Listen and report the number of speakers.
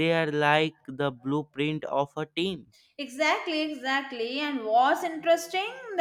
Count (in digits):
2